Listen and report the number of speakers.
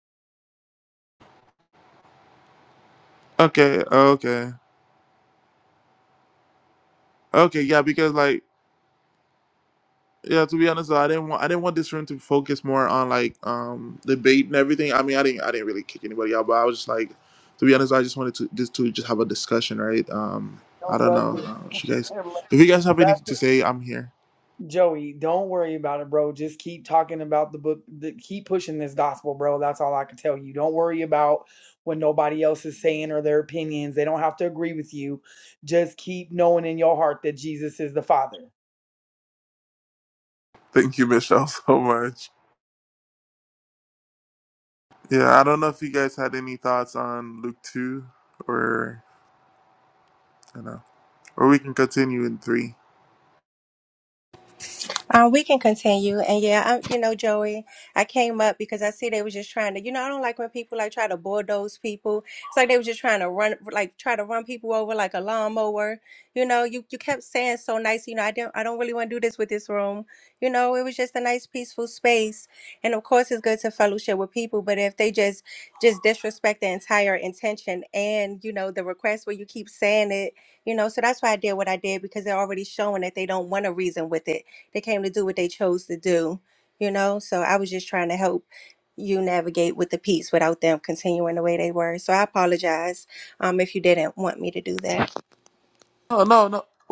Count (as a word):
three